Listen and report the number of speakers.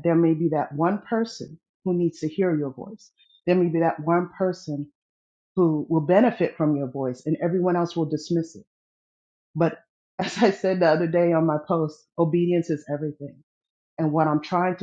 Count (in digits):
1